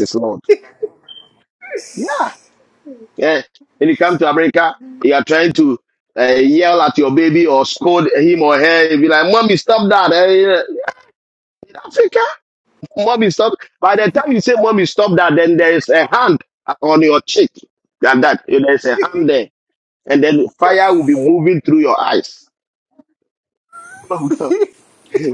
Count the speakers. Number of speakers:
1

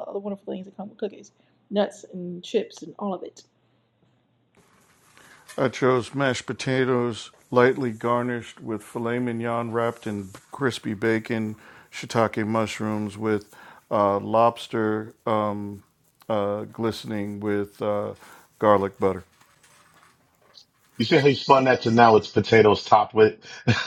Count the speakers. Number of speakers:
3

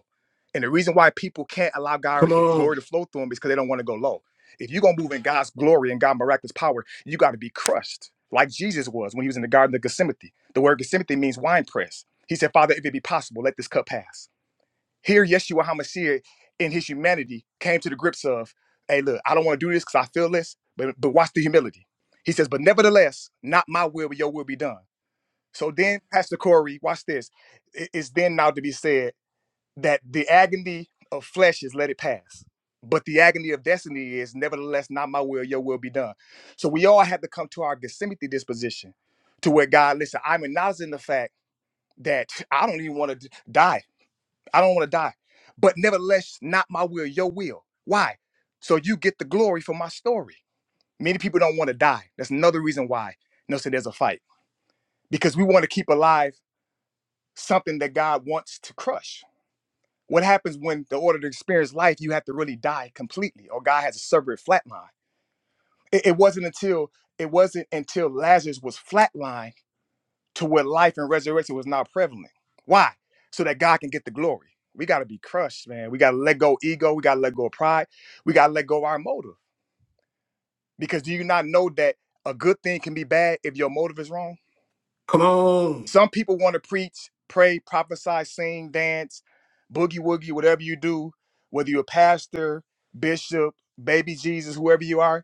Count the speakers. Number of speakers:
2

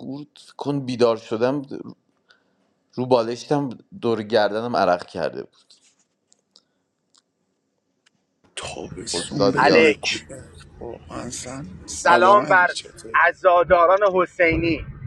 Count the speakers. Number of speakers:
3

